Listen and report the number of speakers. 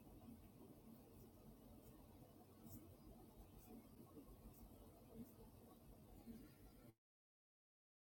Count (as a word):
zero